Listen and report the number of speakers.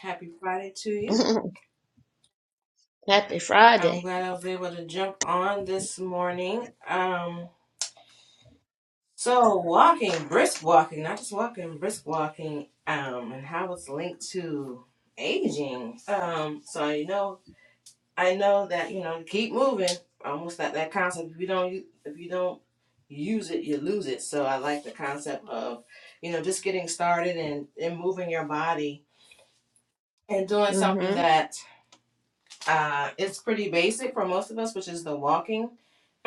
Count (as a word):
two